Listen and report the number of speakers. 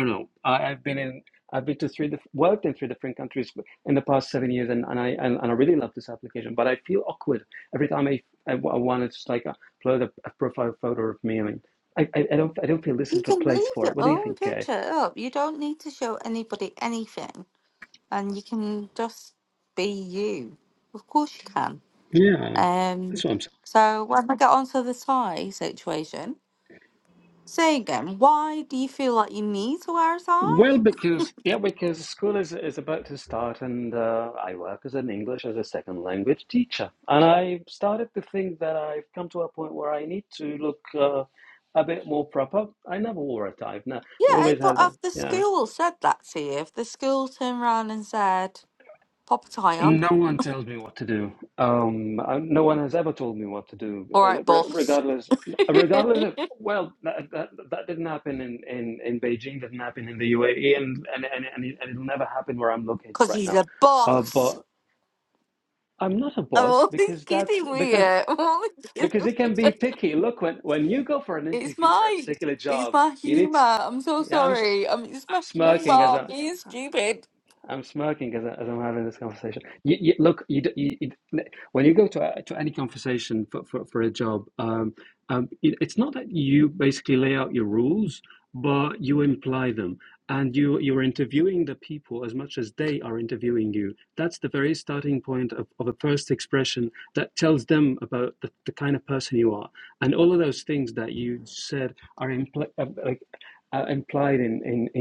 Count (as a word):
two